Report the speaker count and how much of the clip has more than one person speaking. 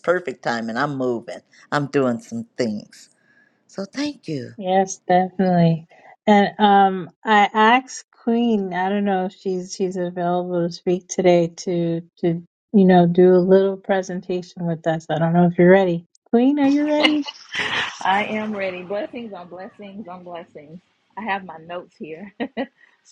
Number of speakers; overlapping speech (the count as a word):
three, no overlap